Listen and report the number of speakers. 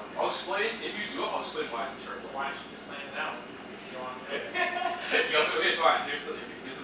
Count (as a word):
three